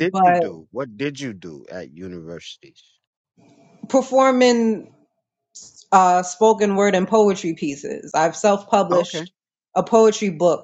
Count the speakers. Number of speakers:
2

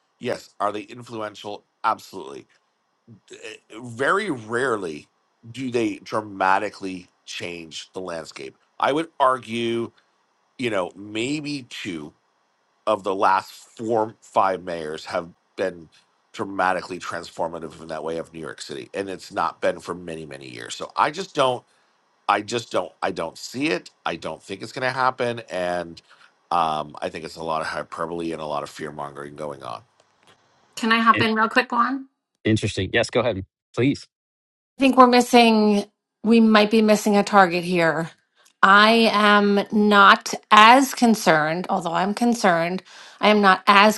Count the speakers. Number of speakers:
3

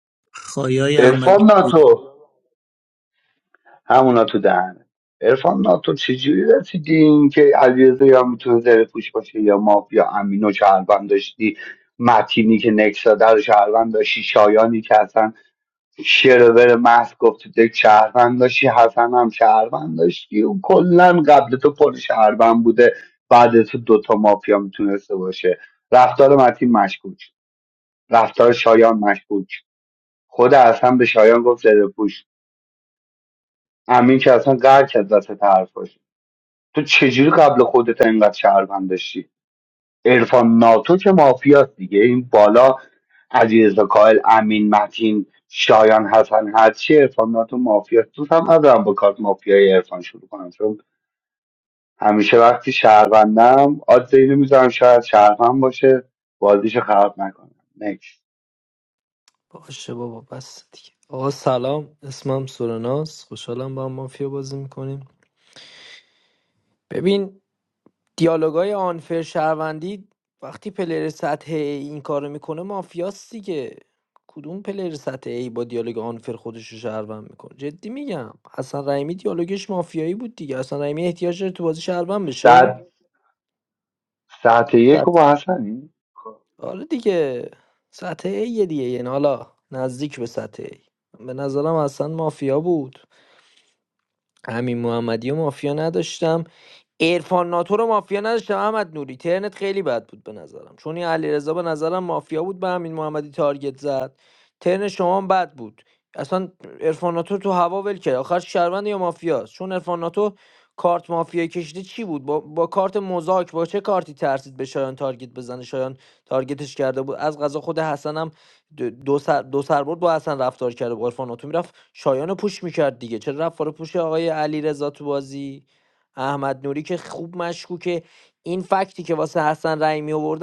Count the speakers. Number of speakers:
3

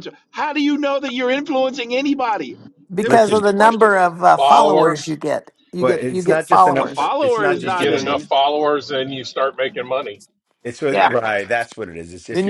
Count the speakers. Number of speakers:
4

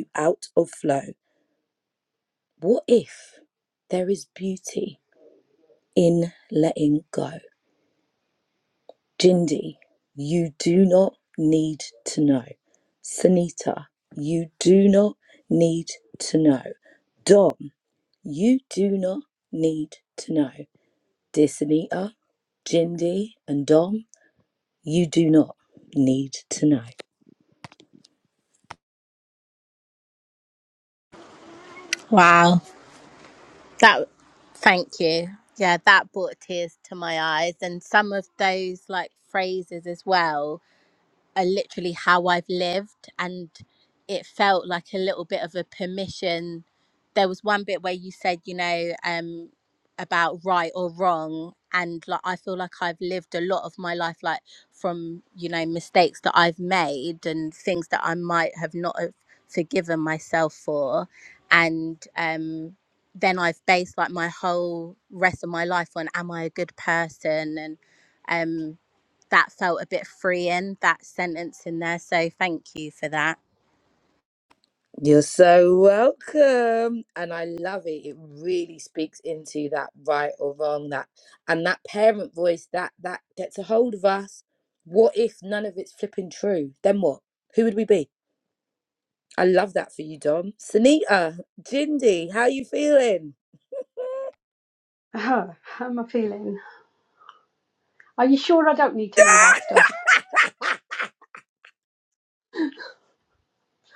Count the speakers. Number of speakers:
3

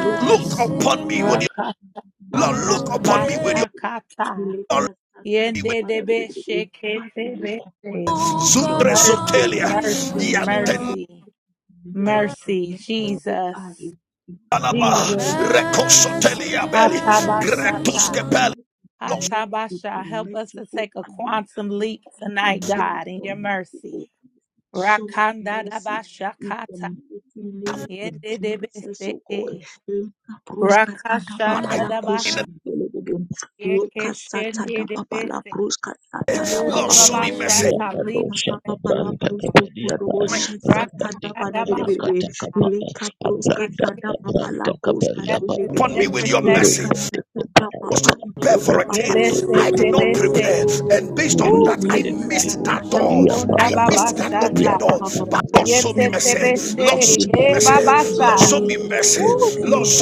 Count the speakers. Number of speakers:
4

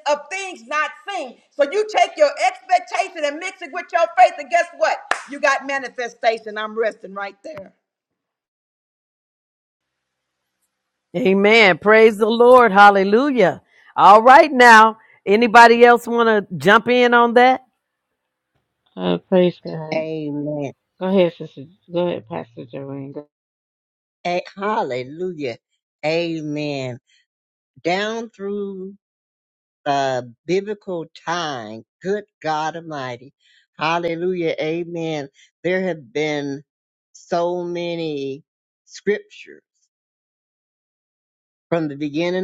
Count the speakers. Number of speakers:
4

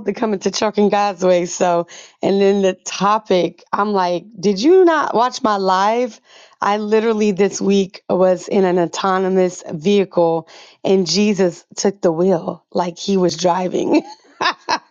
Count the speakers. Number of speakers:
1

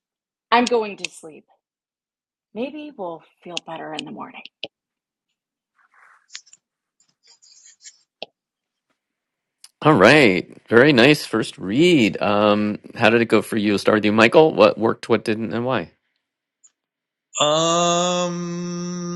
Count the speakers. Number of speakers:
3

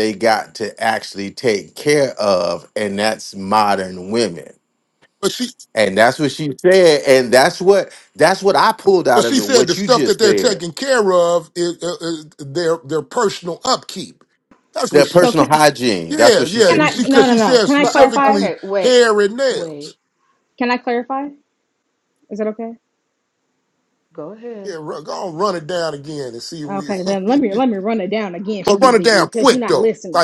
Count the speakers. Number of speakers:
4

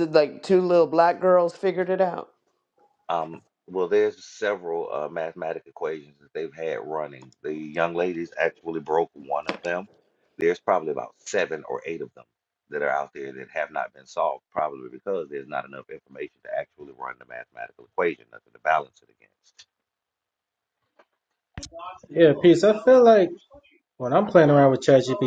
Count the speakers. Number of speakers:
3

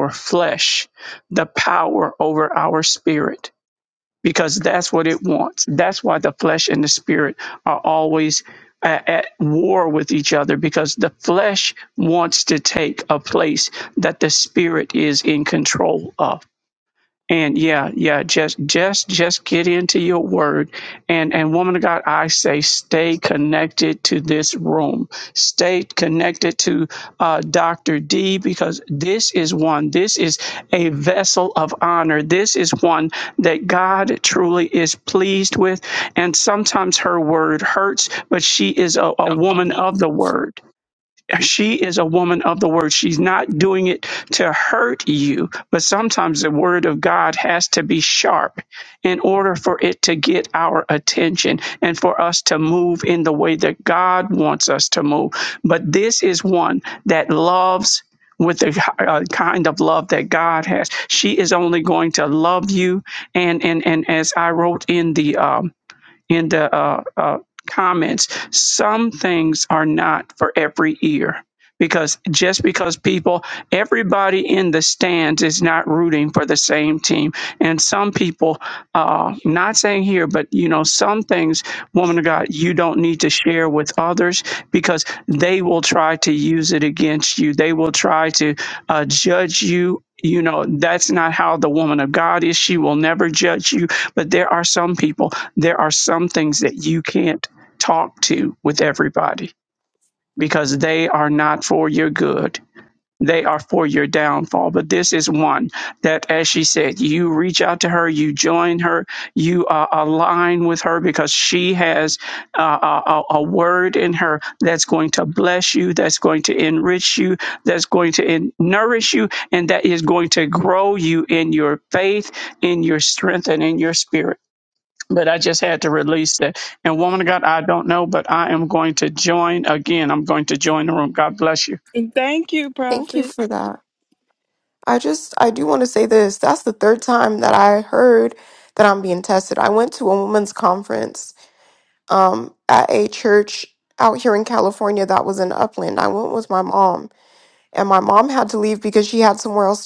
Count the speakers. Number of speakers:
3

